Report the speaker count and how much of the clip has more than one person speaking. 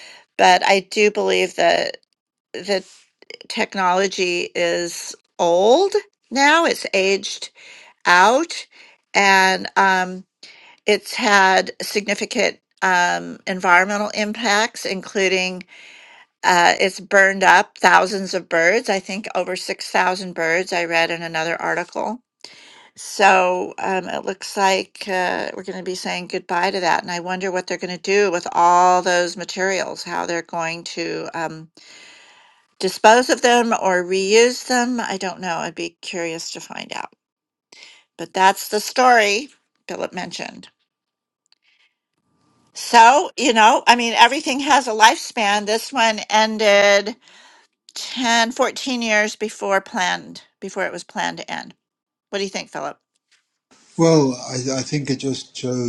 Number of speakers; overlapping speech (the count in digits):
2, no overlap